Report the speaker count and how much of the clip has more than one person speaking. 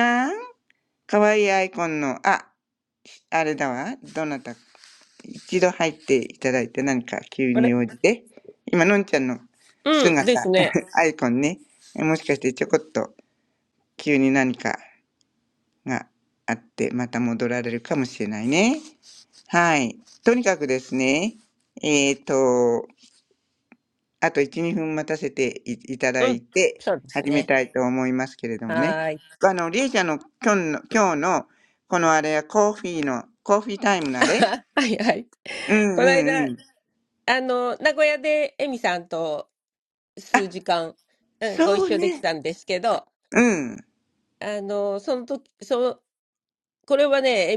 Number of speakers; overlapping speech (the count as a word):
two, about 5%